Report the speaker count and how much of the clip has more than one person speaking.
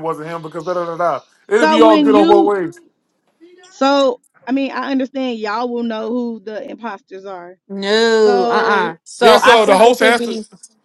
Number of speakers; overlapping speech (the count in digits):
3, about 26%